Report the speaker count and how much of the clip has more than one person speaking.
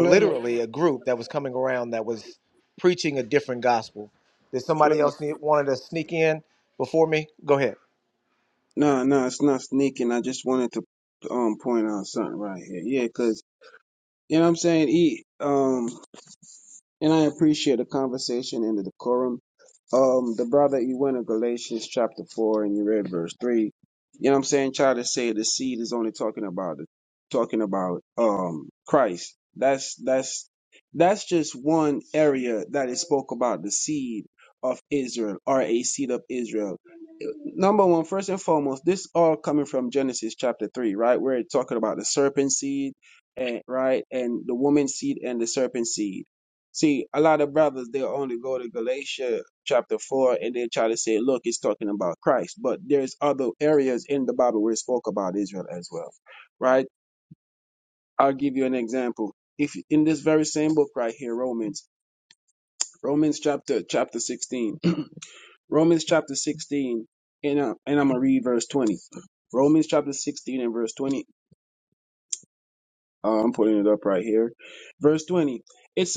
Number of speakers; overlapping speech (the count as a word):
two, about 1%